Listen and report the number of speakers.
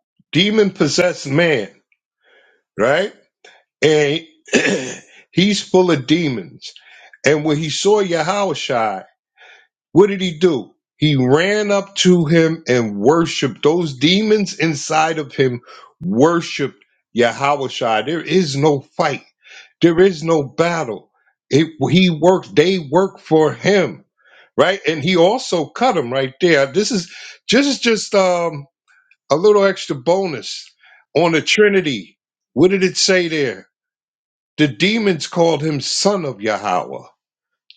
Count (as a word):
one